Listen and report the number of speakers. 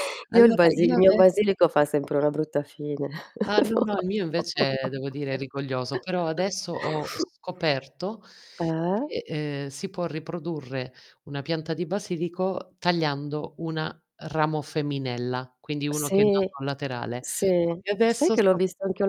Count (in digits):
2